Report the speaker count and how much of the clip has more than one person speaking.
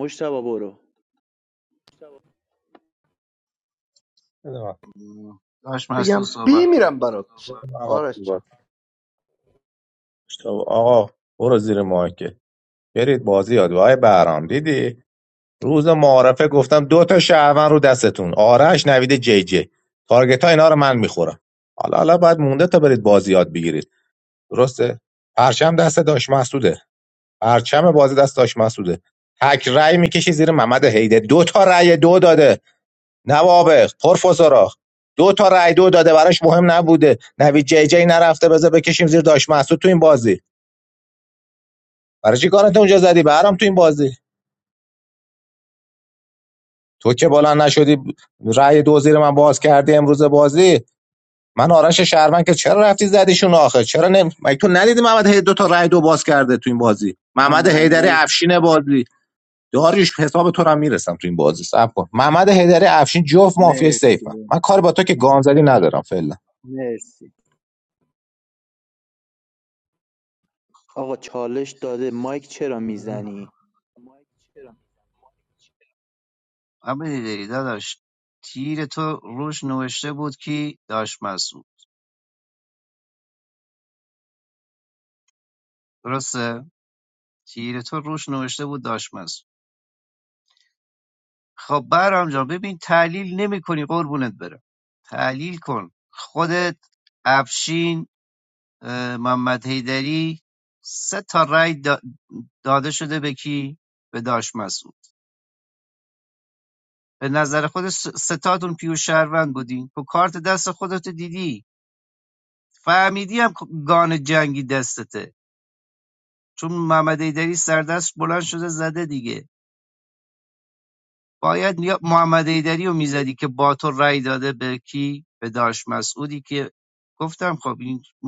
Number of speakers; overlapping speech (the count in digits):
4, about 2%